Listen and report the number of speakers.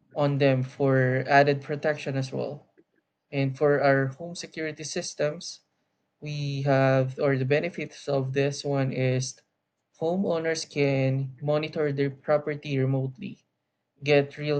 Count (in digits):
1